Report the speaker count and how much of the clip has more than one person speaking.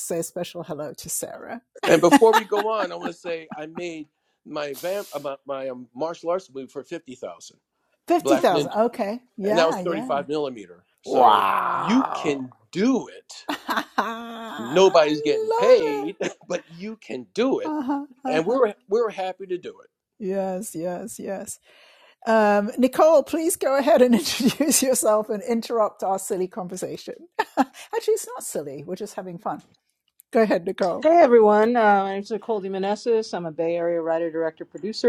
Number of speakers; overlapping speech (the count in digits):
3, about 9%